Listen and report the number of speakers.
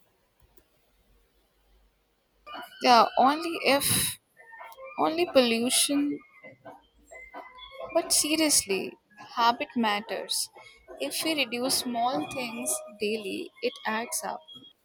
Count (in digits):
1